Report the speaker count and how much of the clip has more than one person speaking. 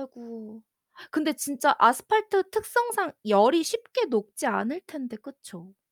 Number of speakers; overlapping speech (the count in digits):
1, no overlap